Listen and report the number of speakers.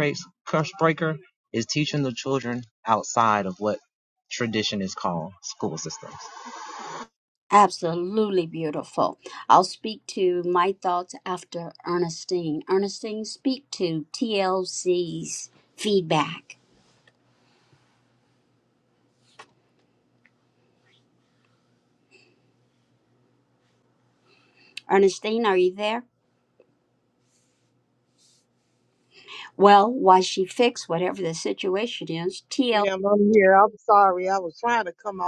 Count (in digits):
3